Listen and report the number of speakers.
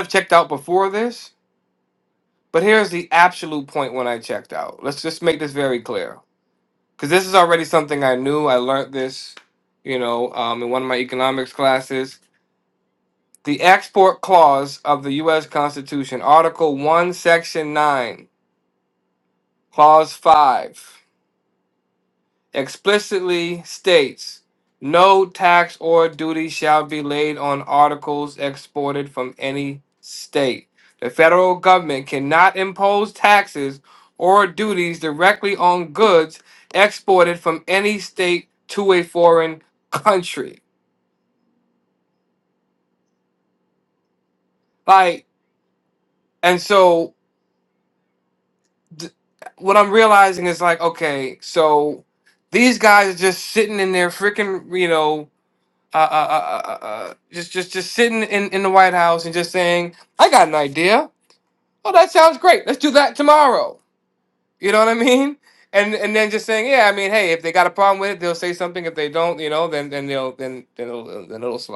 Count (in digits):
1